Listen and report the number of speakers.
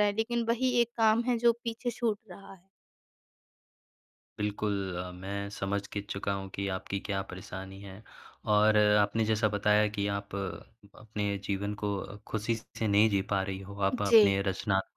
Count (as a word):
two